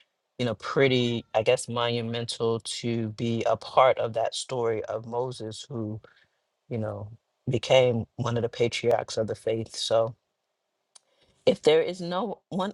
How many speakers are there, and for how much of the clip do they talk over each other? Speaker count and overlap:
one, no overlap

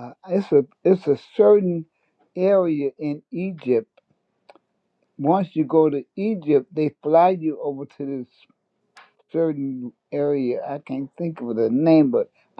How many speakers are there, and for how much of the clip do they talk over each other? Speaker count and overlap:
one, no overlap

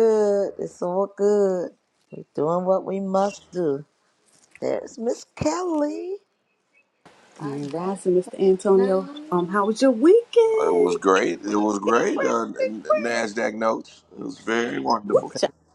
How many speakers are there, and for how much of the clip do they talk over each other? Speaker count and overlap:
three, about 17%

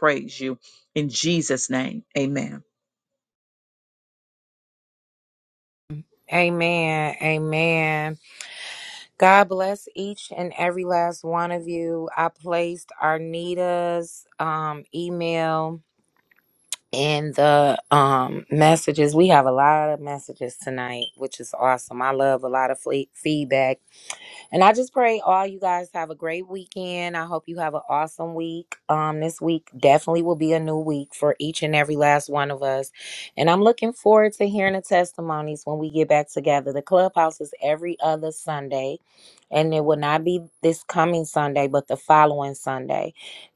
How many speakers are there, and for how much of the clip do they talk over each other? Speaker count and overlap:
two, no overlap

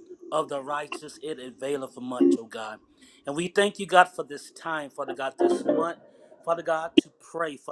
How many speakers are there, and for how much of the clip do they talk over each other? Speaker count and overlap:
one, no overlap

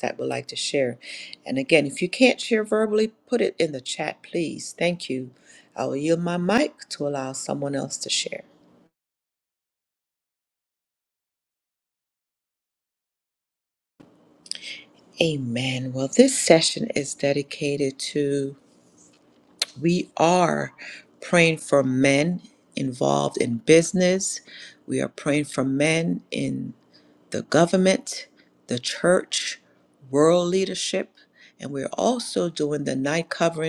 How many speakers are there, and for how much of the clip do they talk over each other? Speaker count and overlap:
one, no overlap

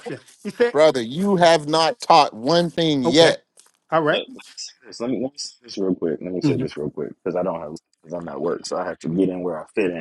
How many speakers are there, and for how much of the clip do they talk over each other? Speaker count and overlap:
three, about 7%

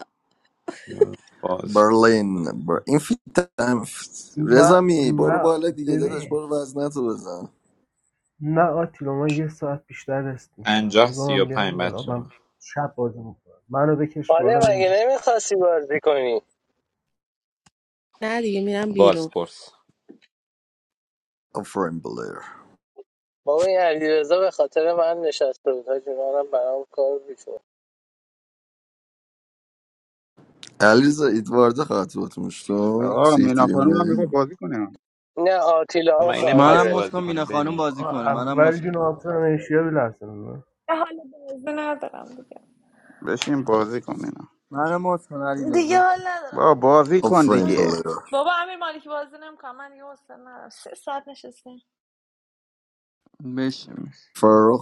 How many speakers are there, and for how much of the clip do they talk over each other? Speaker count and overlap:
eight, about 17%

